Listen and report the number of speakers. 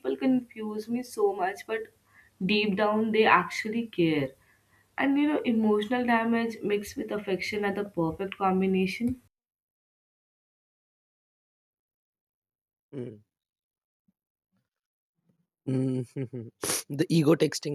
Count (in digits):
2